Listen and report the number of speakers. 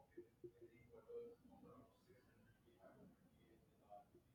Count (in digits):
0